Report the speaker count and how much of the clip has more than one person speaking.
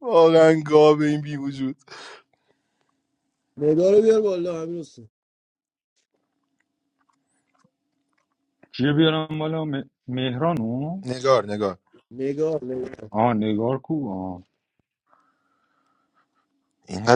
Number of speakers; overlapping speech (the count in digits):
3, no overlap